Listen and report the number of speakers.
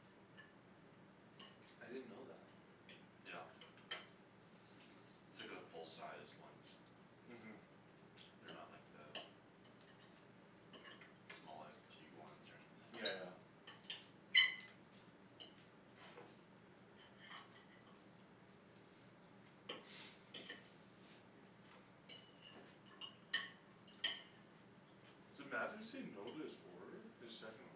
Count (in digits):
2